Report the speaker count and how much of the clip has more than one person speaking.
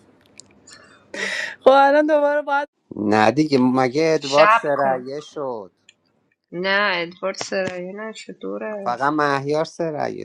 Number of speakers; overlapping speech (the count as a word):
three, about 9%